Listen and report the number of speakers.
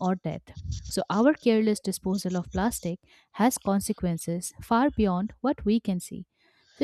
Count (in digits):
1